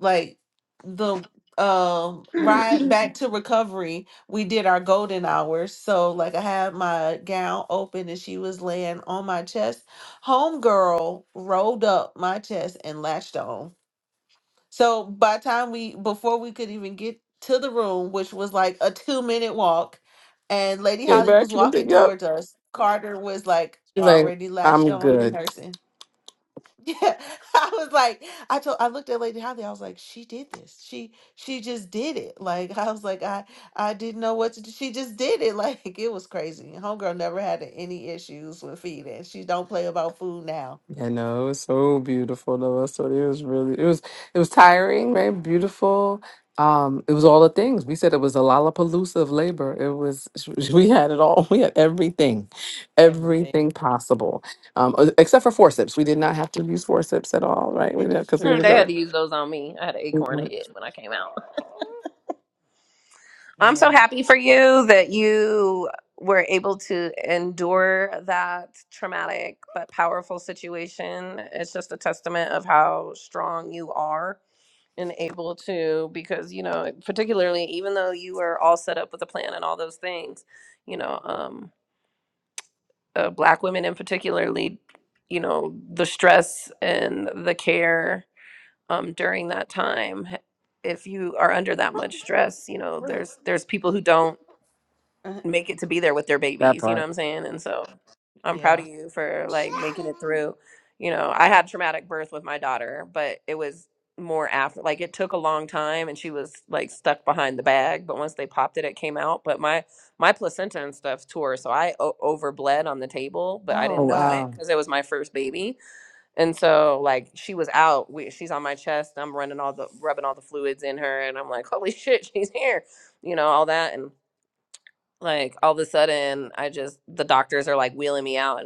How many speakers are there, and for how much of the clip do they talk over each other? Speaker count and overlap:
3, about 5%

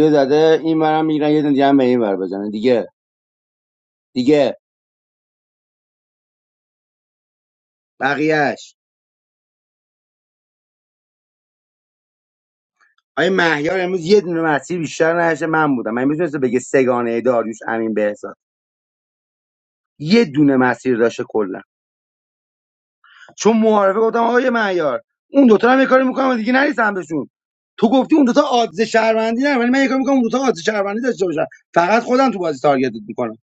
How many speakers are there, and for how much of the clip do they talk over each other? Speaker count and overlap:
1, no overlap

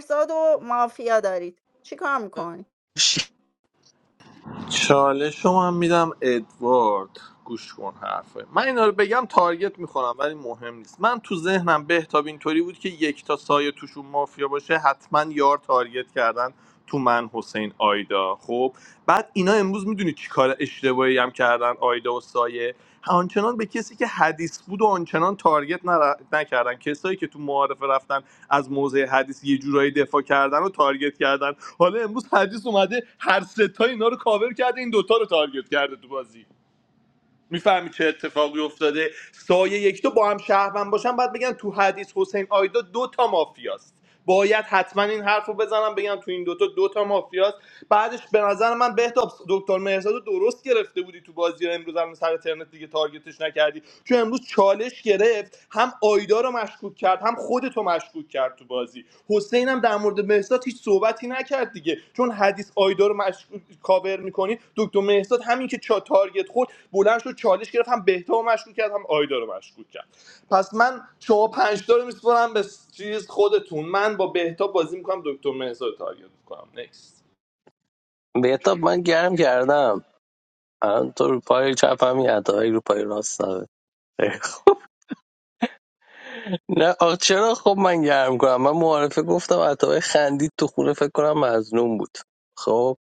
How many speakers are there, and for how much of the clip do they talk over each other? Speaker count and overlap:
3, no overlap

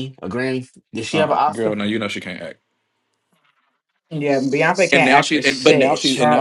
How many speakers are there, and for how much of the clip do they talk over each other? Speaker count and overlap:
3, about 32%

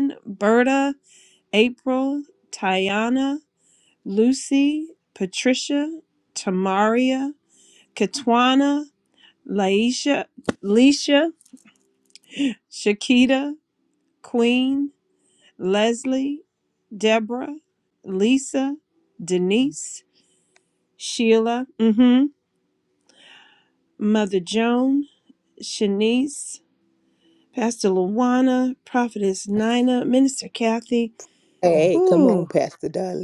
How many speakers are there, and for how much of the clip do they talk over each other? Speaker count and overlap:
2, about 2%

